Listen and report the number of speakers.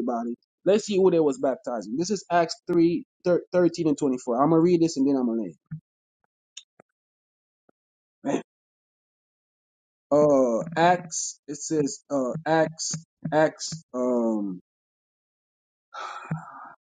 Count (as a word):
one